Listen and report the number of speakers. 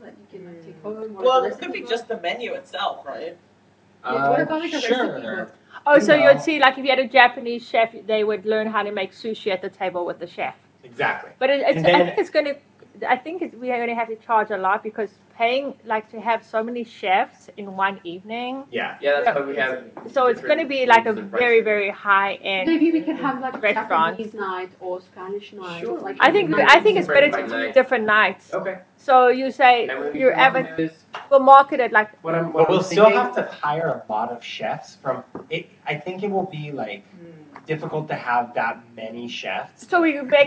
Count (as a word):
five